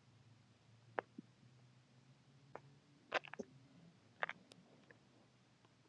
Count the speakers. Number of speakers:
zero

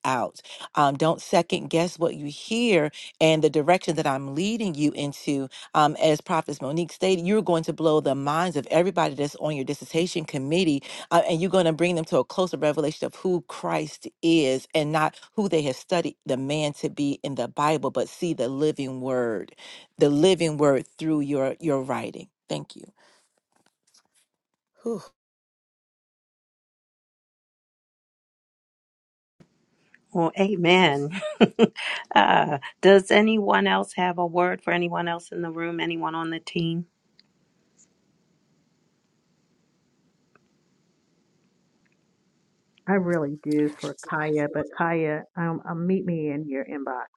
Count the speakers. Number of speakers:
three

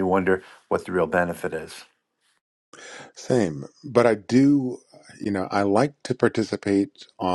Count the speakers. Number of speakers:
two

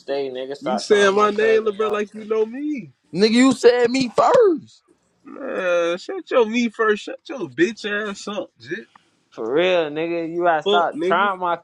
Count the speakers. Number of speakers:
three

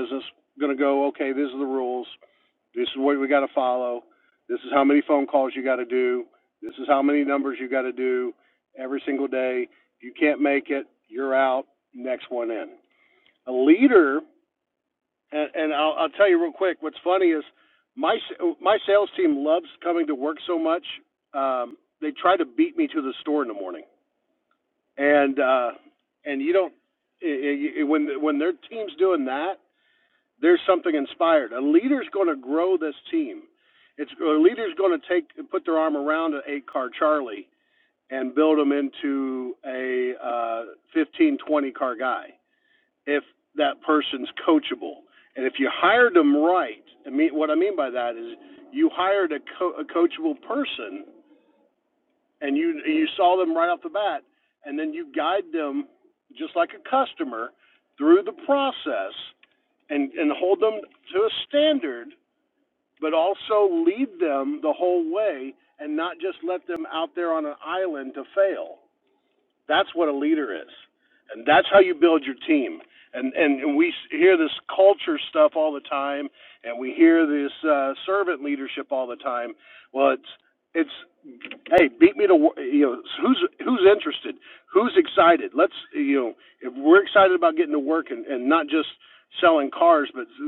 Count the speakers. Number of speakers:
one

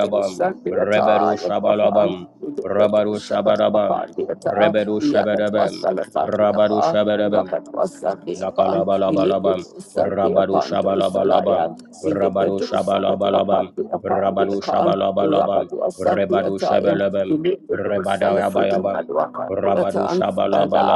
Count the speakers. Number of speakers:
two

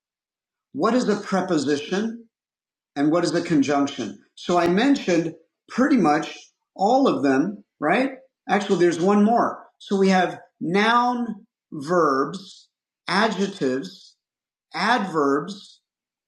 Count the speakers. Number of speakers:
one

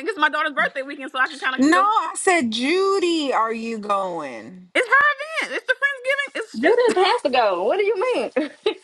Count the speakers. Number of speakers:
three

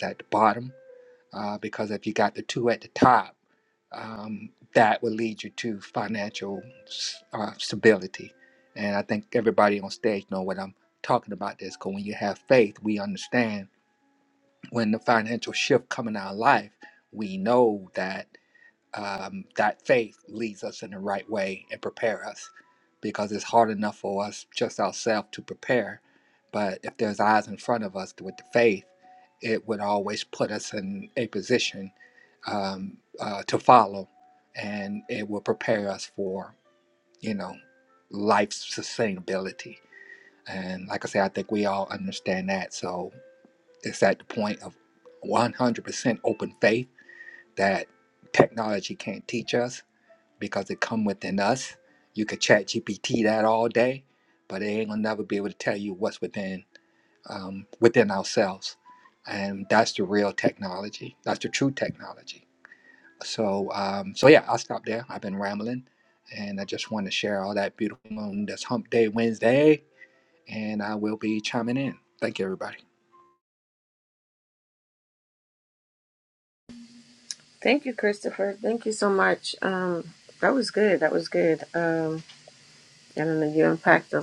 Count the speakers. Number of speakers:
two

